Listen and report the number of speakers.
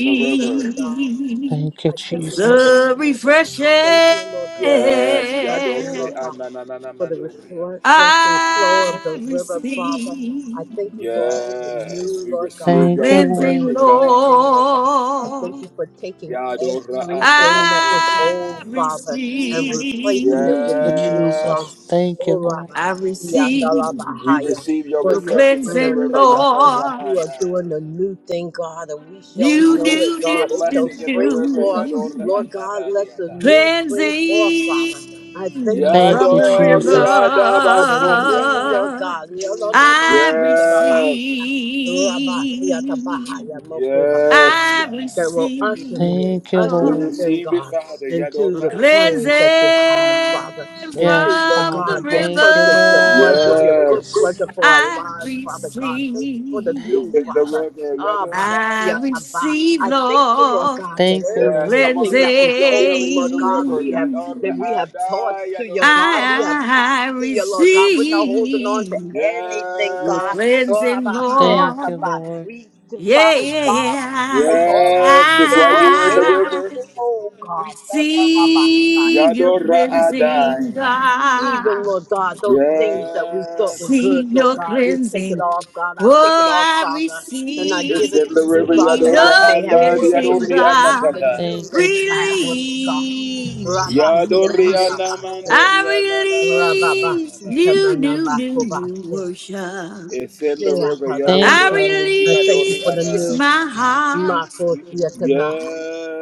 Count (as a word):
four